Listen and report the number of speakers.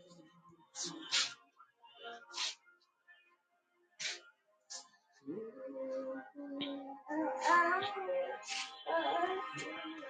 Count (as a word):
zero